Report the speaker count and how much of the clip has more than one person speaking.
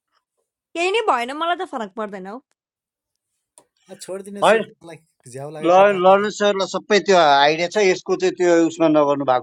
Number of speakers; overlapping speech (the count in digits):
3, about 7%